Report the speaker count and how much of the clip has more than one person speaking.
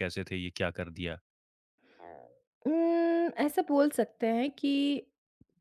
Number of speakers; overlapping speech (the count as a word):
two, no overlap